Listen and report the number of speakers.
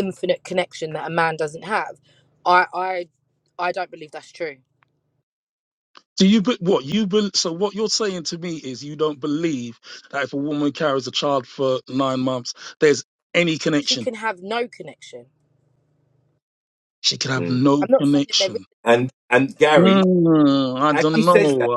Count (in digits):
3